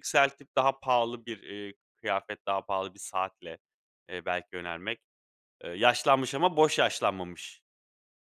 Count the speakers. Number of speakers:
1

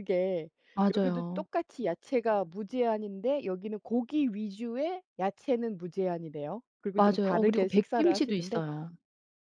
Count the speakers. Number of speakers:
2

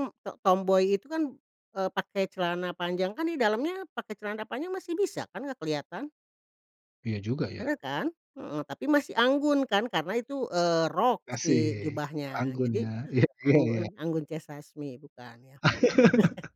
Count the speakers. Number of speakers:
2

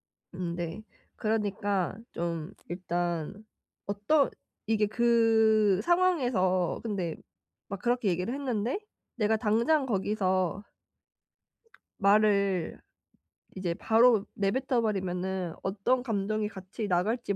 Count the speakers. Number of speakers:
1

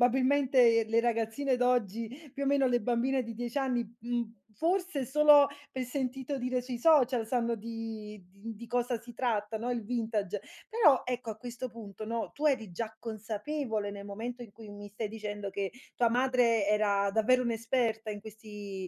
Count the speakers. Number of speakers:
1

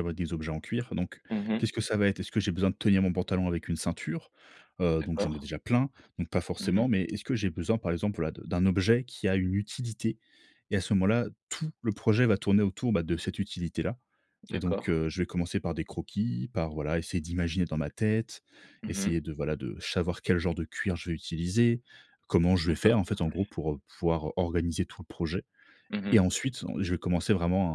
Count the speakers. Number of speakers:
2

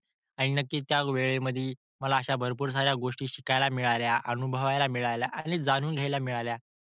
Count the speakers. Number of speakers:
1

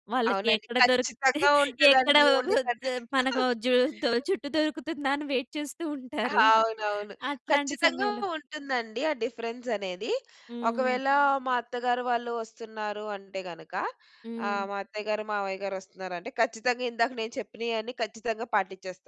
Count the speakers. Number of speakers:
2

